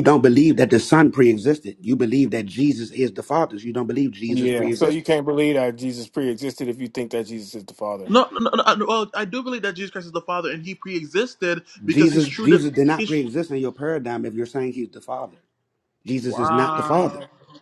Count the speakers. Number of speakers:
3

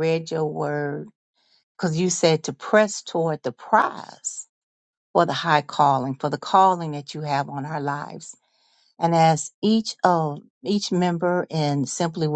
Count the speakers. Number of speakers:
1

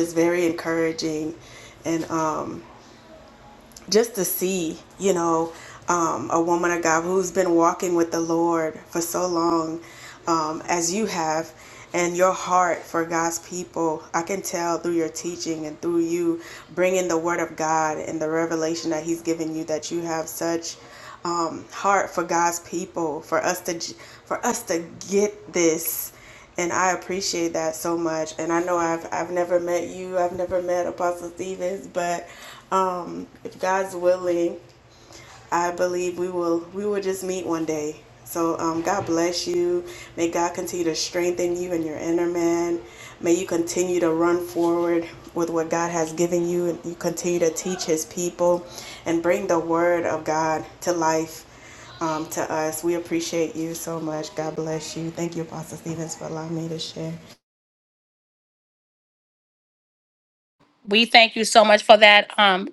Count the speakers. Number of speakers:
2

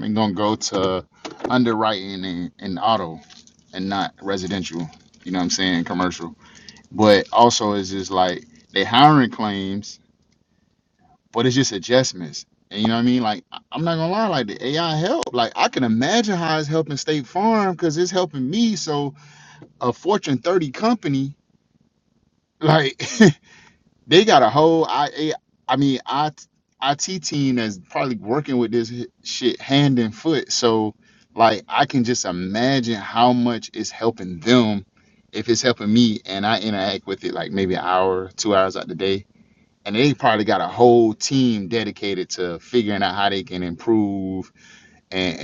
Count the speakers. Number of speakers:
1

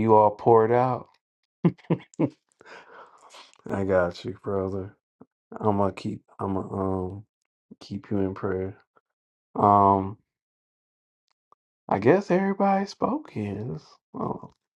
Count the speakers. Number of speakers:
1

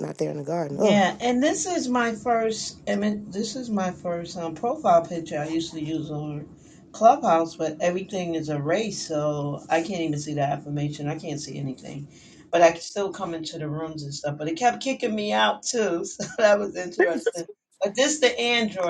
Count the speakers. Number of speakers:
2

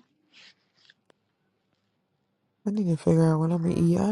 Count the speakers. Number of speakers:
1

